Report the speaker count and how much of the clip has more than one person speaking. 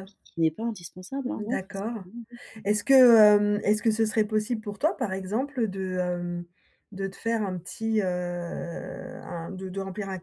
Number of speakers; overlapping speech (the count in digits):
2, about 4%